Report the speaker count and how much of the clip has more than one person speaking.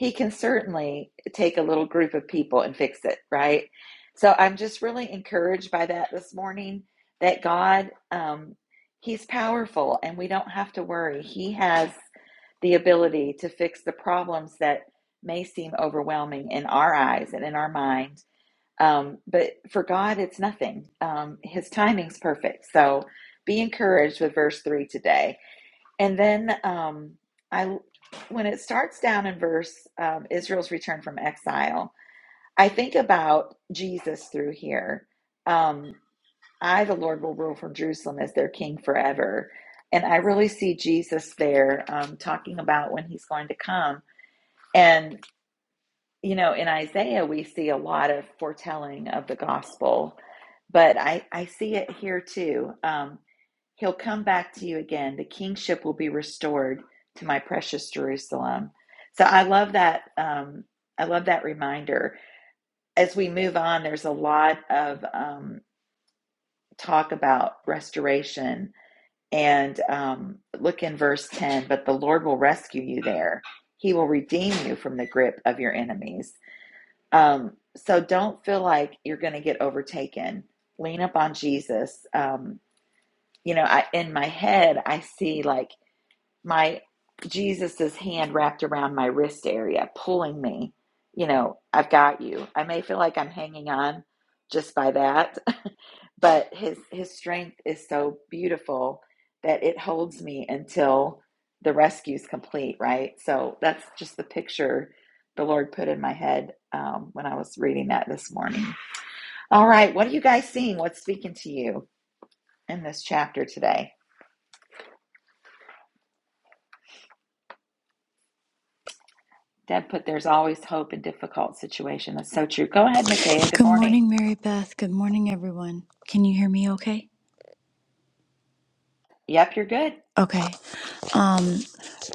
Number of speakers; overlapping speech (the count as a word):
two, under 1%